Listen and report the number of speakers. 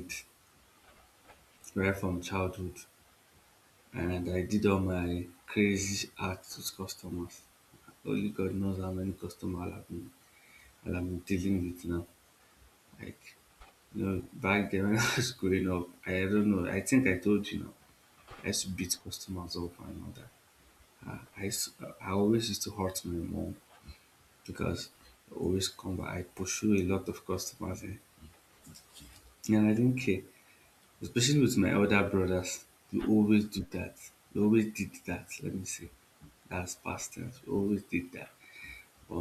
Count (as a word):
one